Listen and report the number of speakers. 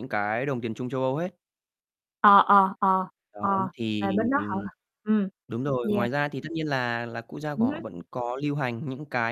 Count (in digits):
2